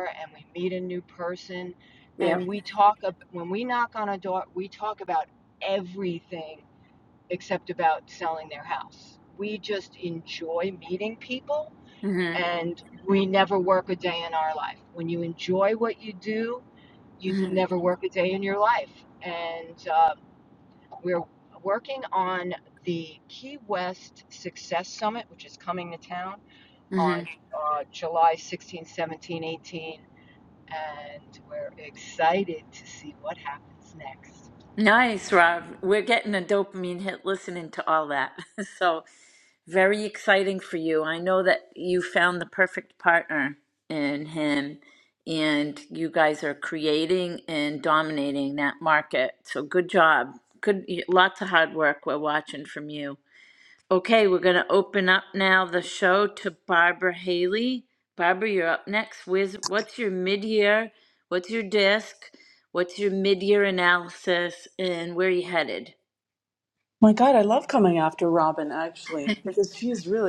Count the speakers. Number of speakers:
three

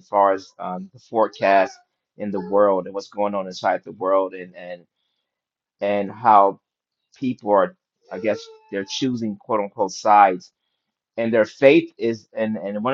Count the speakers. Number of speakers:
one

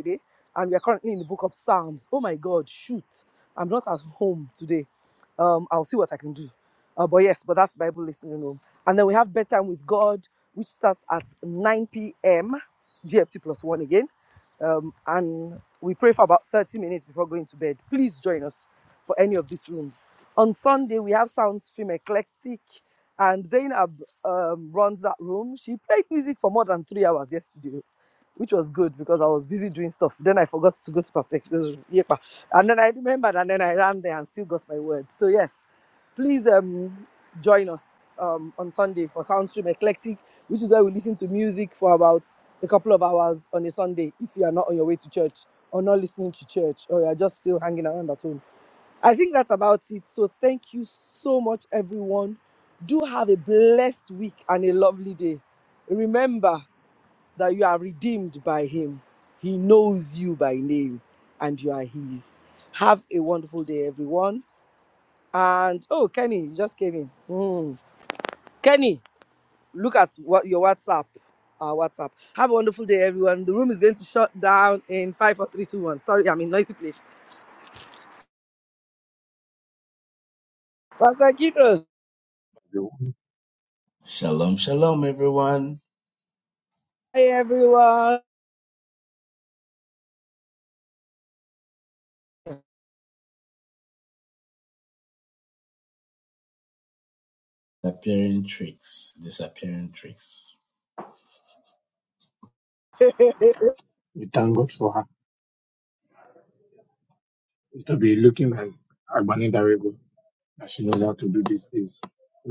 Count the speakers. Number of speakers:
three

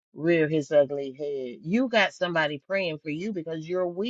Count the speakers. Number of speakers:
one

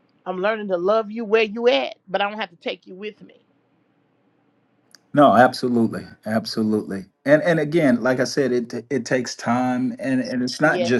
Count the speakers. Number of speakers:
two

